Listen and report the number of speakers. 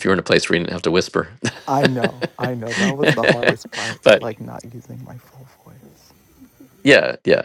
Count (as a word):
two